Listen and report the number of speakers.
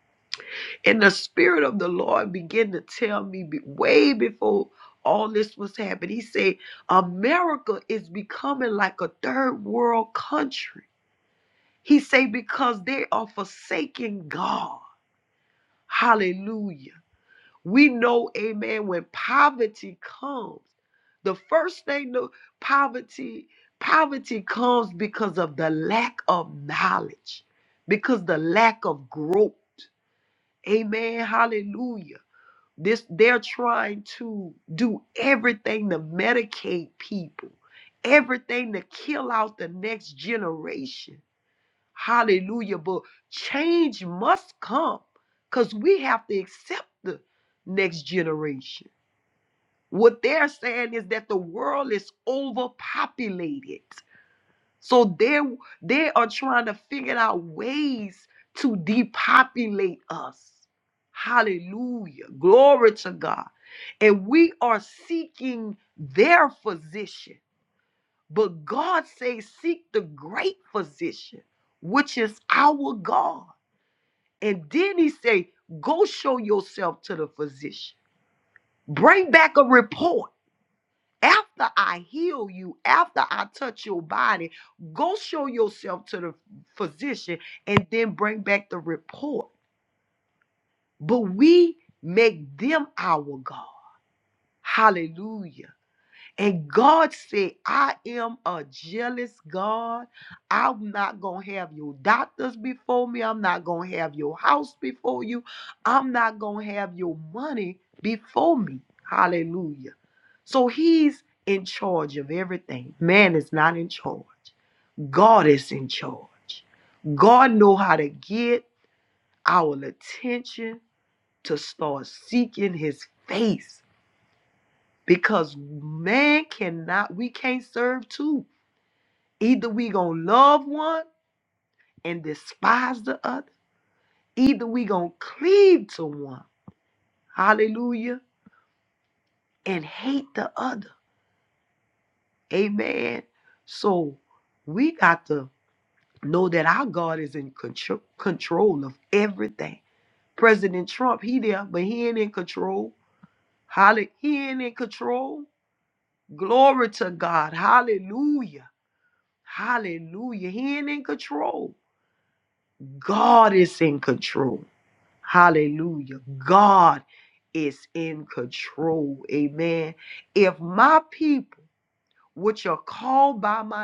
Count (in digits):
1